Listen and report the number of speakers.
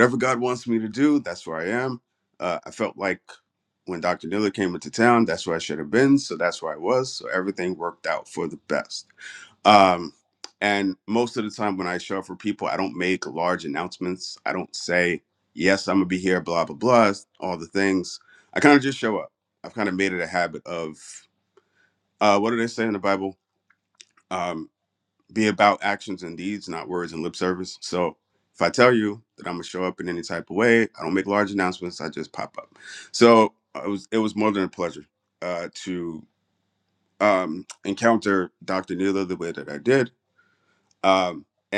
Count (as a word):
one